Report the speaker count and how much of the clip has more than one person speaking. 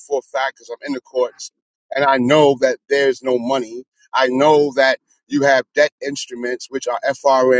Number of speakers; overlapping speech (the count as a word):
one, no overlap